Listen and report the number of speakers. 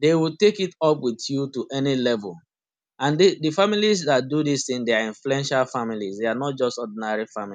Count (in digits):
1